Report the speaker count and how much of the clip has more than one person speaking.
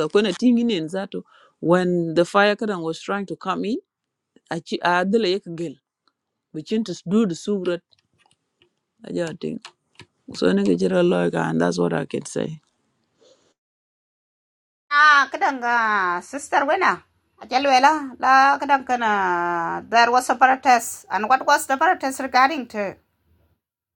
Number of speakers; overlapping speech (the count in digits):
2, no overlap